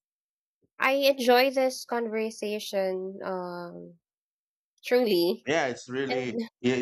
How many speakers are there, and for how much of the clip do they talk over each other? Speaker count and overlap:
2, about 6%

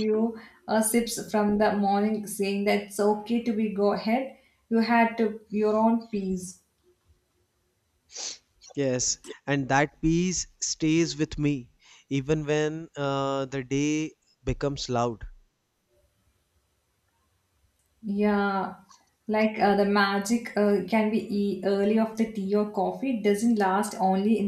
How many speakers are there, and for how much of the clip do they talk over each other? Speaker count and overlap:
2, no overlap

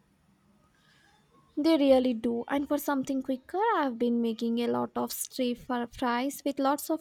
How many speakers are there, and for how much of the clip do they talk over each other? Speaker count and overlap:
1, no overlap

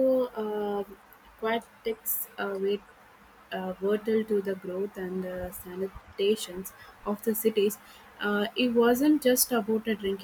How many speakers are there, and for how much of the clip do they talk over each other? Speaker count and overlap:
1, no overlap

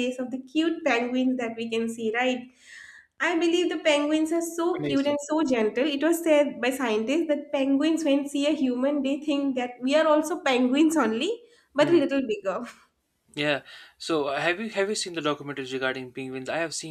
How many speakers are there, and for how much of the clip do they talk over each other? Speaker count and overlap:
2, about 4%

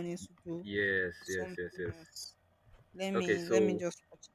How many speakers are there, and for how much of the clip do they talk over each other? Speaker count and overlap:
2, about 19%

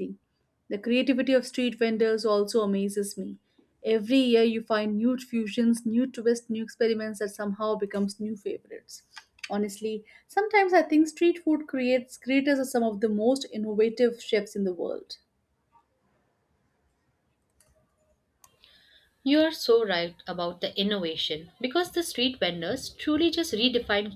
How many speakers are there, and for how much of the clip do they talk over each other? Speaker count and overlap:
2, no overlap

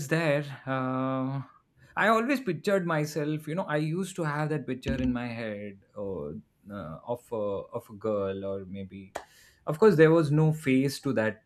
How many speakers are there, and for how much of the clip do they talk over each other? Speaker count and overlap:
1, no overlap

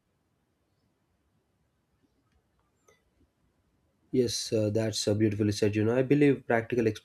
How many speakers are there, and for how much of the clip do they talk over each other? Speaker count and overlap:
1, no overlap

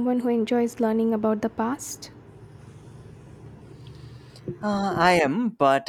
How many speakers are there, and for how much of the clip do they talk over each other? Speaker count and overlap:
2, no overlap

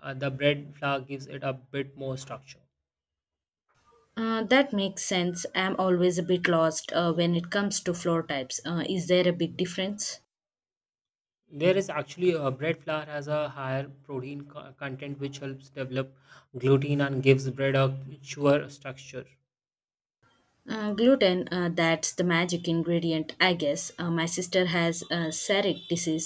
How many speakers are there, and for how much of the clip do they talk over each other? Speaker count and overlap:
2, no overlap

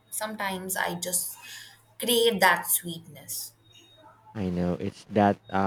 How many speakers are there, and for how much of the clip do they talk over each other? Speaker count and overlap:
2, no overlap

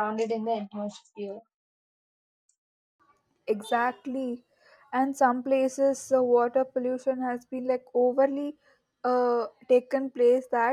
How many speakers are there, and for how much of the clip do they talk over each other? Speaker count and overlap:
2, no overlap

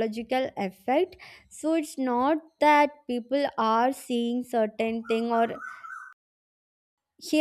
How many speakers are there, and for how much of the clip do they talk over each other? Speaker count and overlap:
1, no overlap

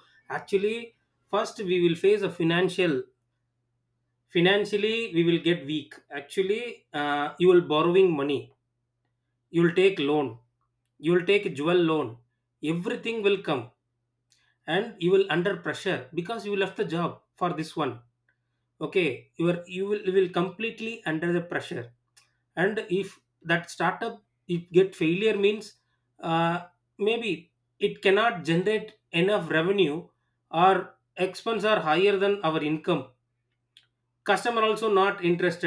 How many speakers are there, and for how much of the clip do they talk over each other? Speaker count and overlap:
1, no overlap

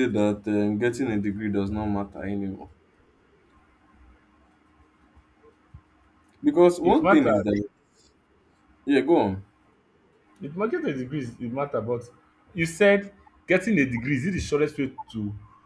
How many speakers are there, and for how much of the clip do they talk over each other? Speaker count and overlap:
2, about 4%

